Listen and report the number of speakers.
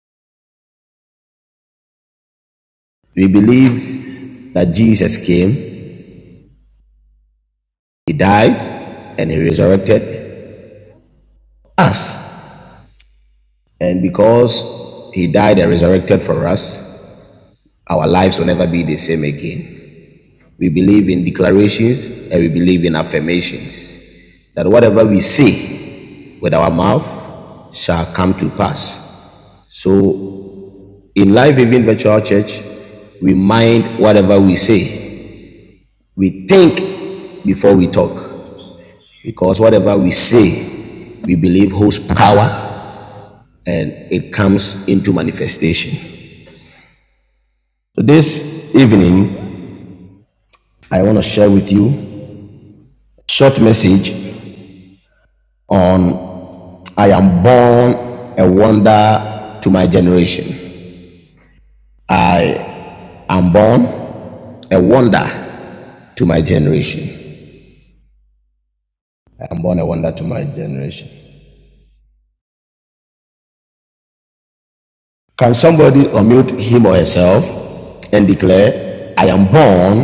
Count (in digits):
1